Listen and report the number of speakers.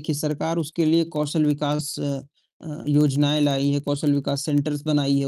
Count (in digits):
1